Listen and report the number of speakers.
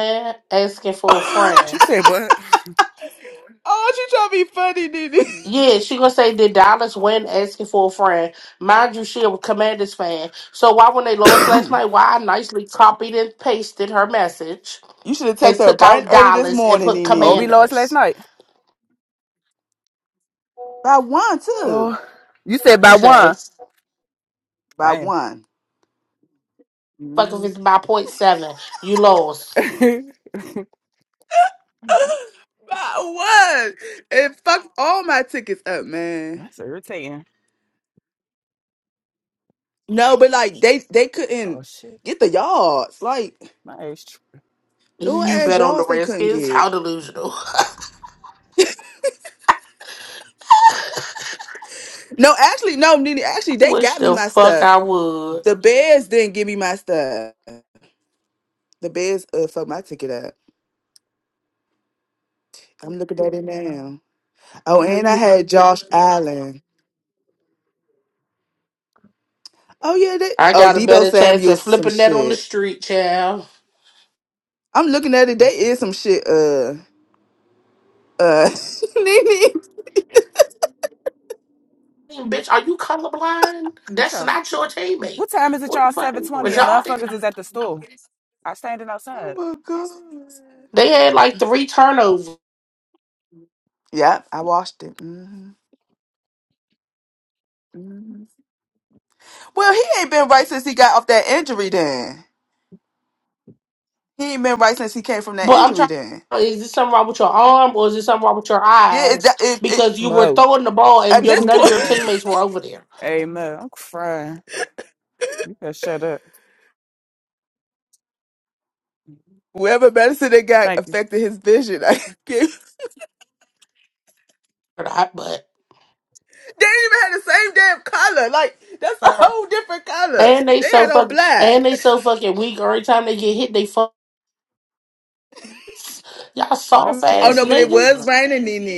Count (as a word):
three